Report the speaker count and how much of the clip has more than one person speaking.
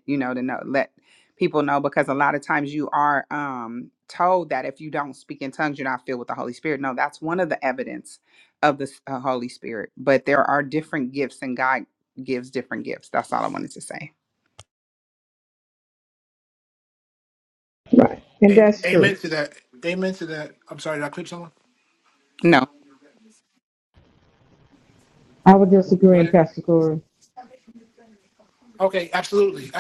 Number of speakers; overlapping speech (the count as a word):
three, about 3%